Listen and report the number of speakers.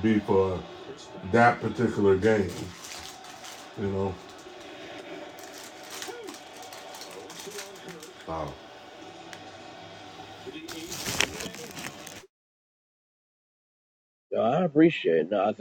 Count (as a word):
two